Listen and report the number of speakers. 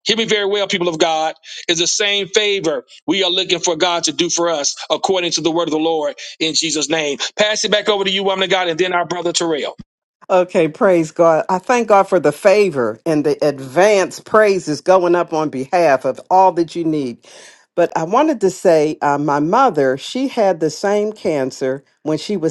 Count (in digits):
2